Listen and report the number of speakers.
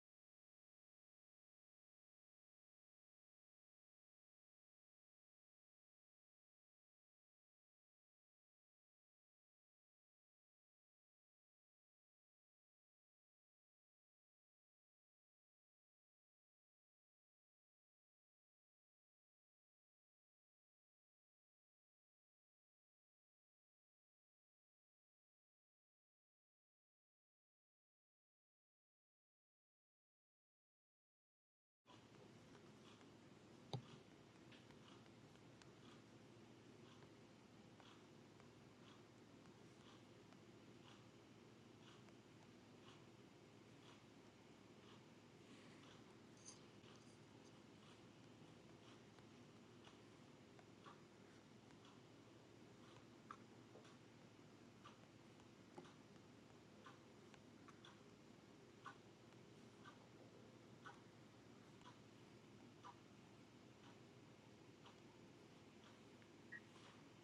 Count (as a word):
zero